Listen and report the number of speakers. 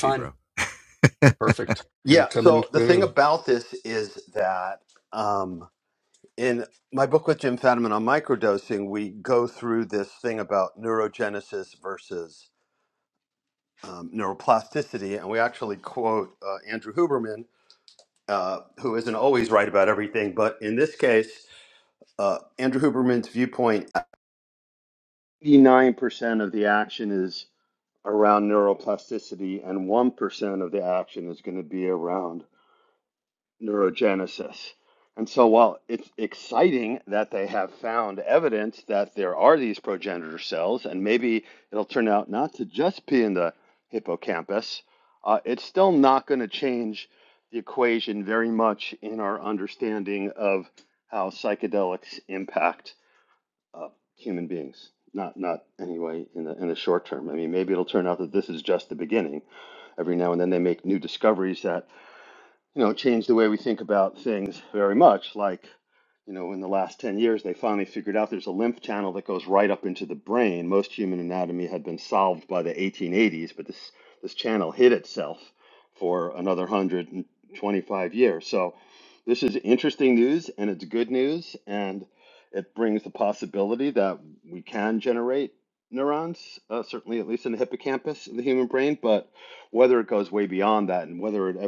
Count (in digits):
2